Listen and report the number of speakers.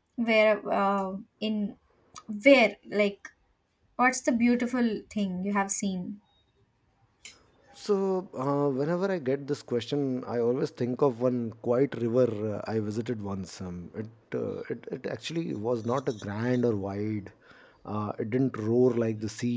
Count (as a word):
two